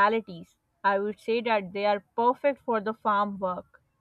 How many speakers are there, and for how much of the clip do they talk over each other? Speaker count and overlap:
1, no overlap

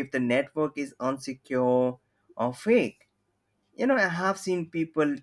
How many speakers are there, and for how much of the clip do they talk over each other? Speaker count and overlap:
1, no overlap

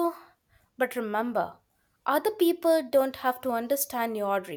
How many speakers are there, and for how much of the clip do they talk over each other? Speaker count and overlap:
1, no overlap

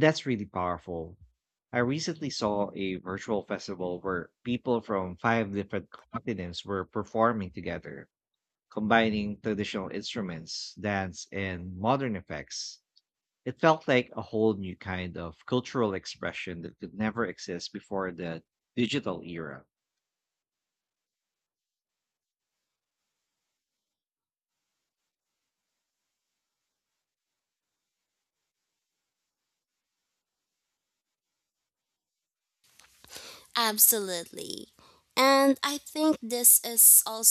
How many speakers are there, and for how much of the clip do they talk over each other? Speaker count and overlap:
2, no overlap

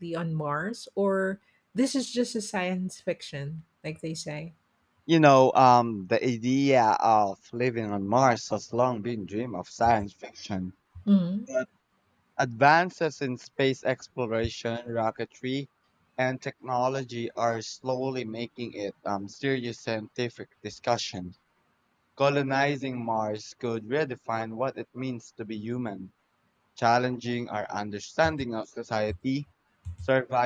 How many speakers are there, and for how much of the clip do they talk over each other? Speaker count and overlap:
2, no overlap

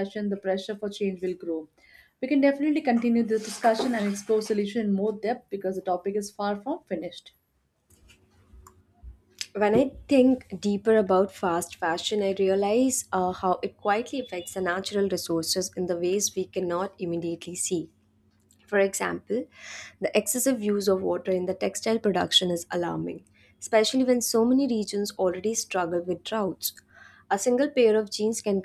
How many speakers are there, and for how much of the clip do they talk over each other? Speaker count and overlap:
2, no overlap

